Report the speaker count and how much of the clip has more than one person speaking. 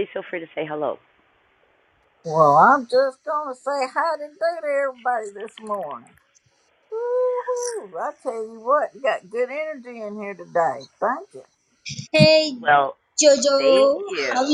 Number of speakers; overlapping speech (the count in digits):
3, about 7%